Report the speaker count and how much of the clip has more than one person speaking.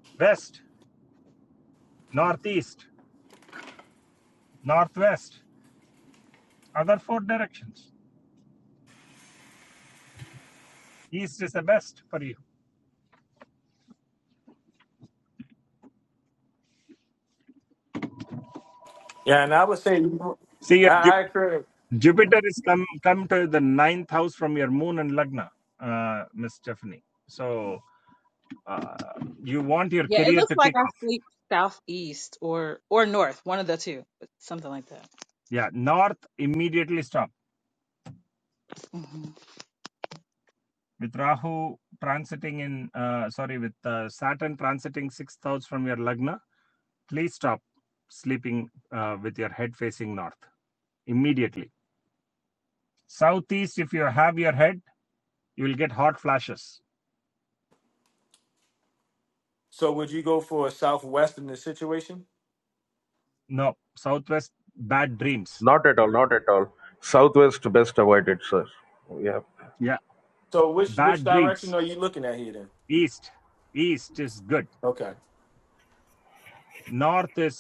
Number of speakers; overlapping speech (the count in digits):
4, about 2%